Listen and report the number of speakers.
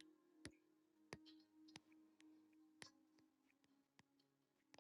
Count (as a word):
zero